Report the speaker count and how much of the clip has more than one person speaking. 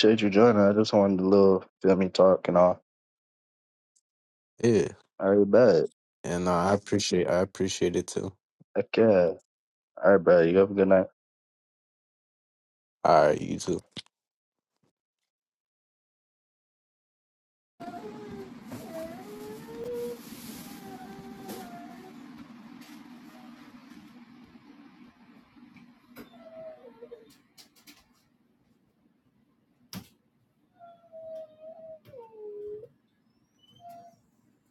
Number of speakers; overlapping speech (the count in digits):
2, no overlap